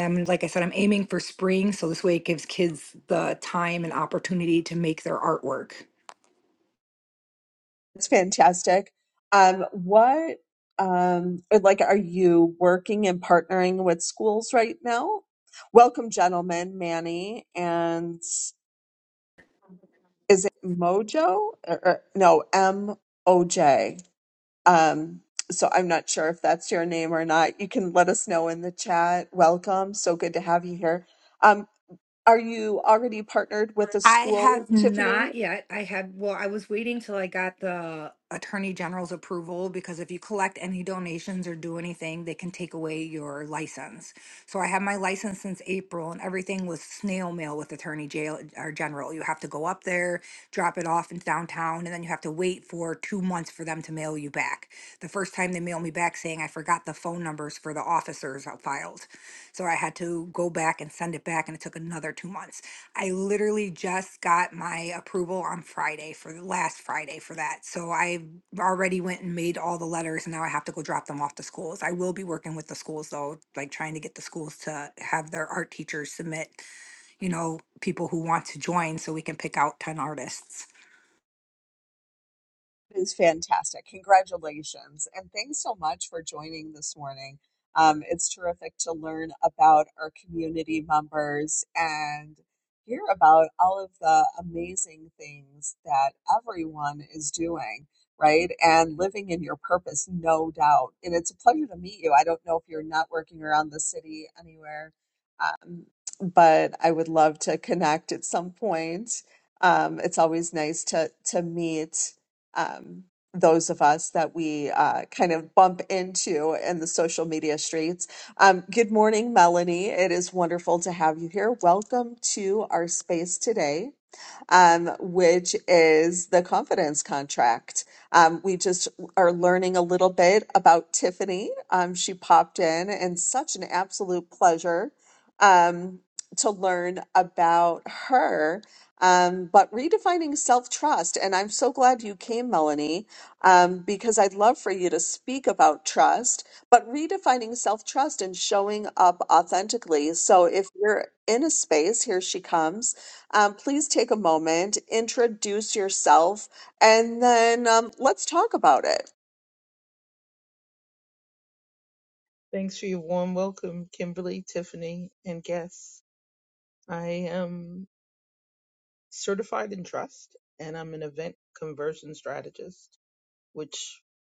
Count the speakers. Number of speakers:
3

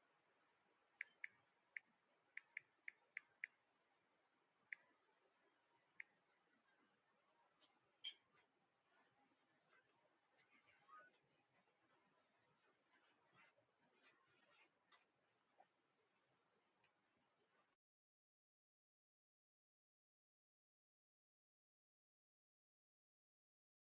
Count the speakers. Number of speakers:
0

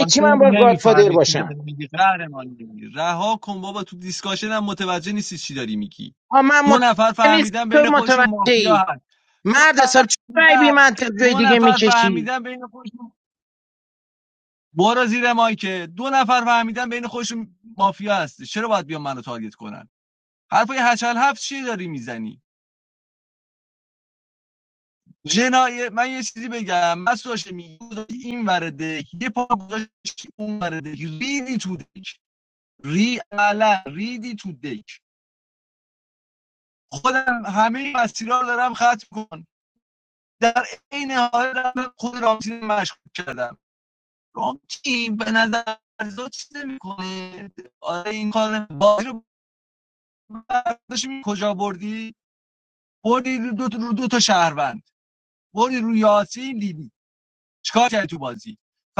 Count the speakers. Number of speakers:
2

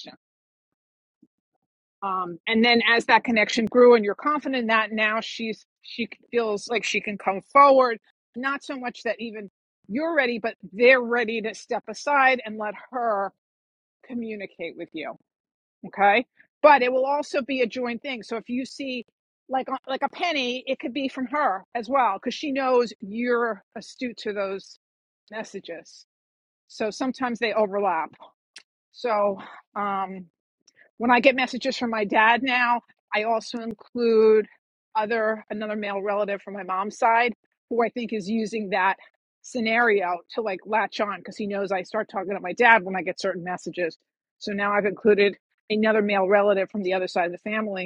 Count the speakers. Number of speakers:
1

